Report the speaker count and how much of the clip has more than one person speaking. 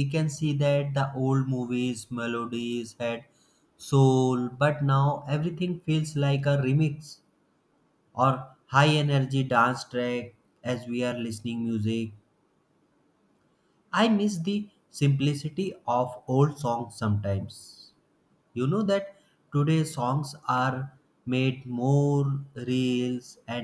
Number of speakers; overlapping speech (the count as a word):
one, no overlap